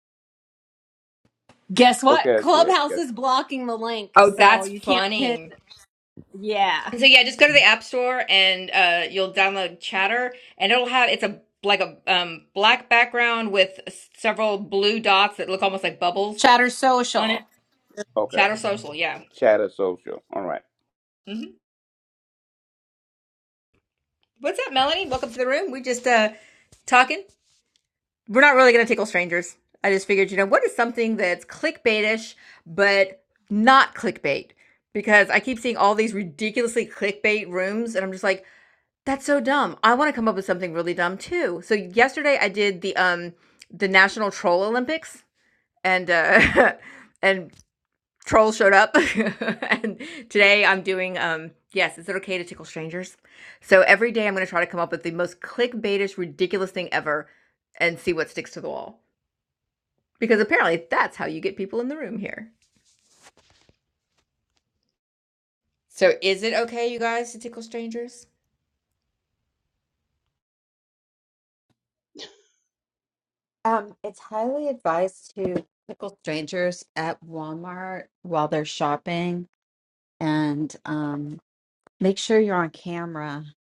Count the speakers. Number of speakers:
four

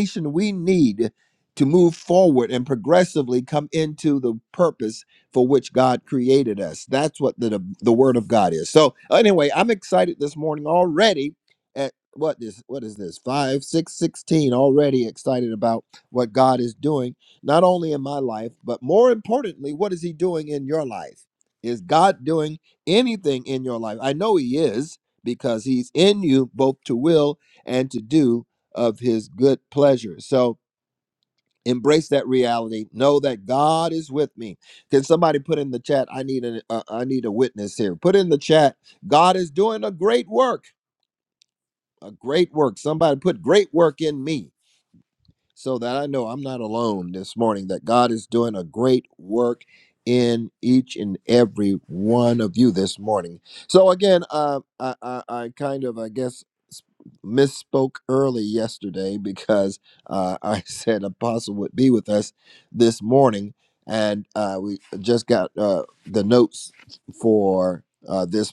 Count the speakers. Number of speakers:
one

